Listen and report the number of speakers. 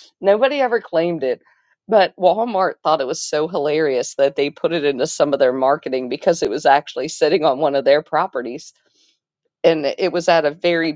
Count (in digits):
1